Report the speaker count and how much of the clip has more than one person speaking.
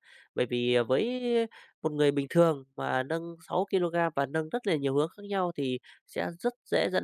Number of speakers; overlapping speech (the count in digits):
1, no overlap